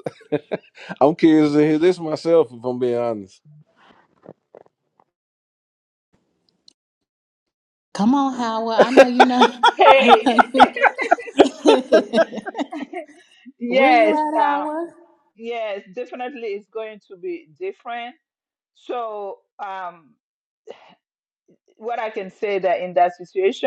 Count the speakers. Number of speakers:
3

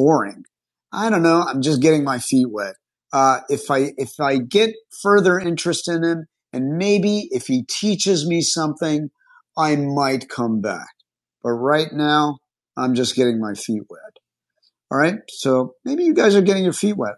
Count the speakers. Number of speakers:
1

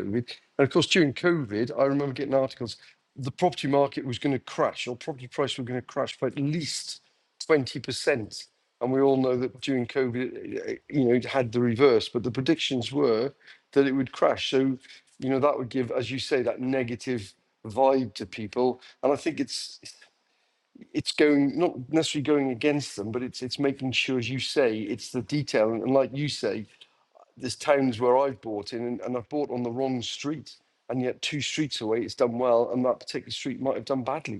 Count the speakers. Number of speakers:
1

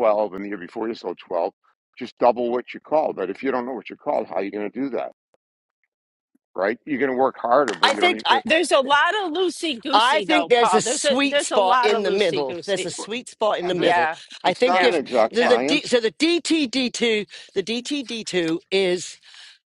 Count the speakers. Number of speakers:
3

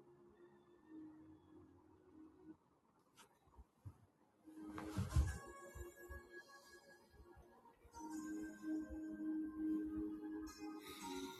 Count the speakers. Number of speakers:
0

